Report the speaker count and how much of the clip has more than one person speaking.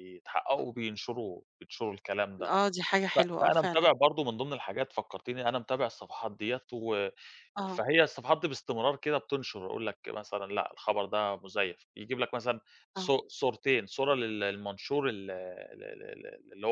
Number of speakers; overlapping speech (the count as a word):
two, about 6%